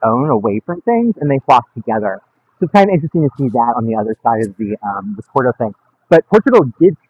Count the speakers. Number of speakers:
one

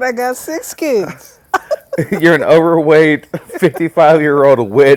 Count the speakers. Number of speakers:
two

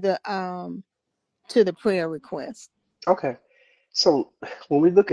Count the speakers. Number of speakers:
two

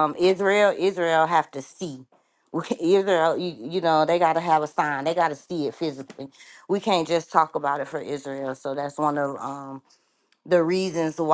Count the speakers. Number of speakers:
one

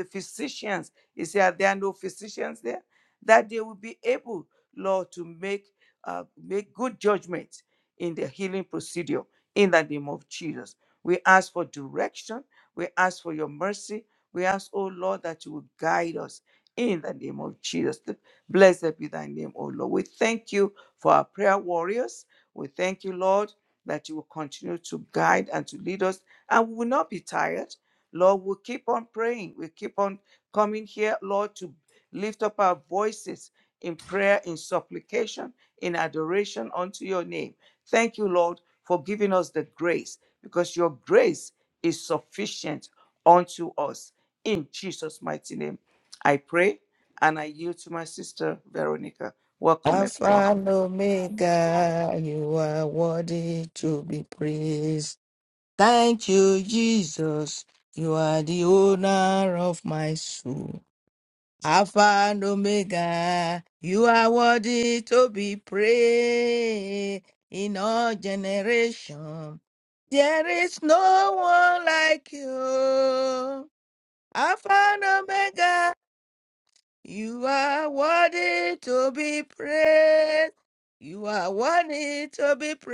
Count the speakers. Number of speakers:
two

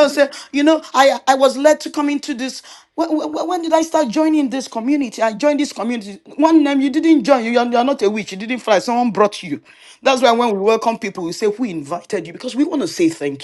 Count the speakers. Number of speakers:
one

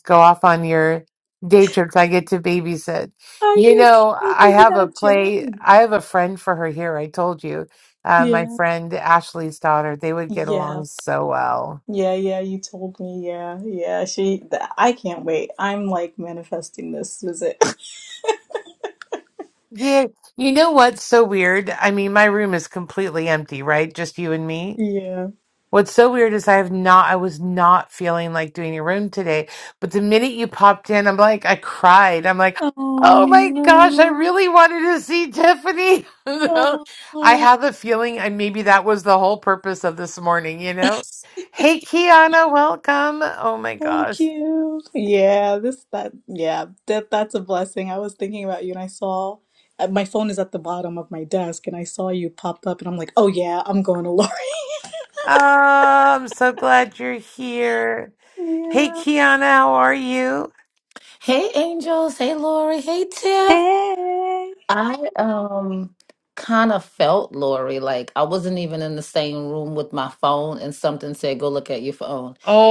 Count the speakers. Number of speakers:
three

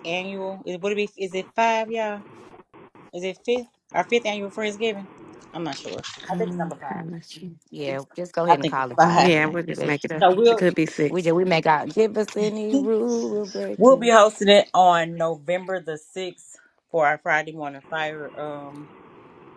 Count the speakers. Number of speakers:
three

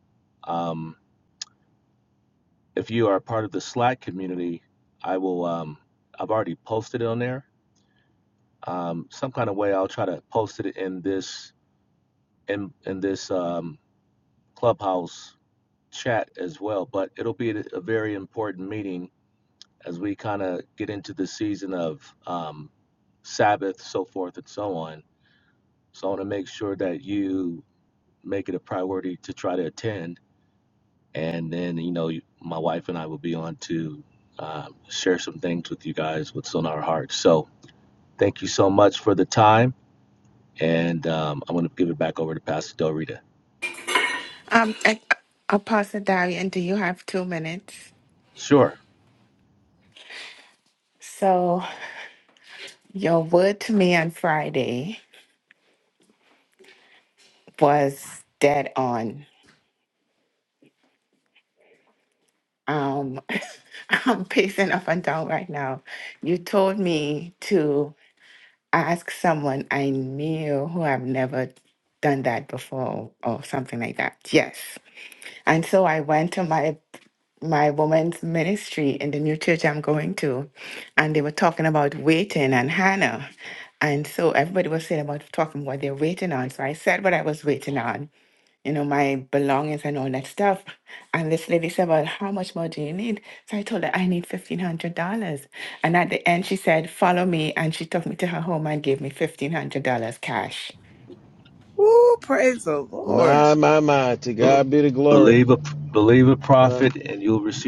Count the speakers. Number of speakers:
four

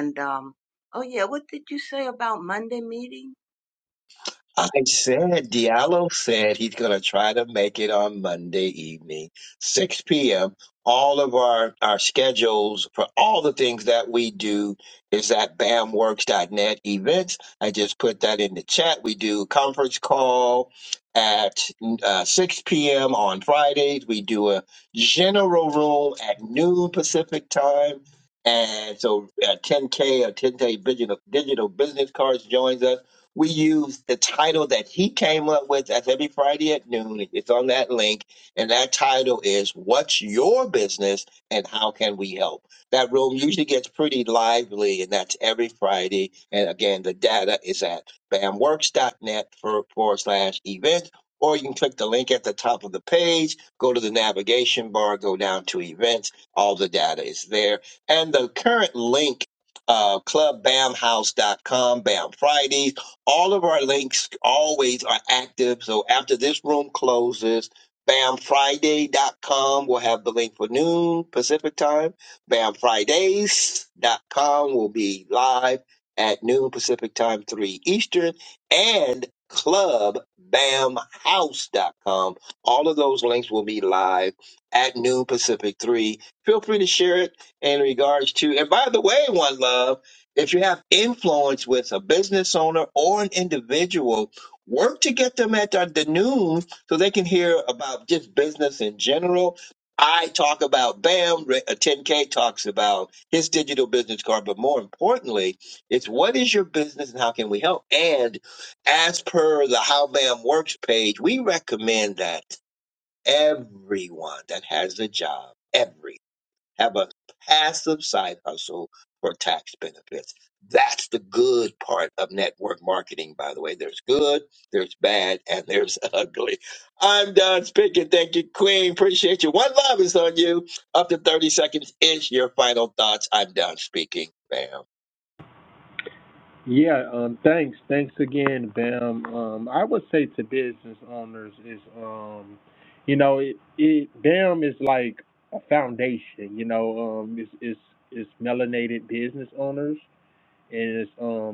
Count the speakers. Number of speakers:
three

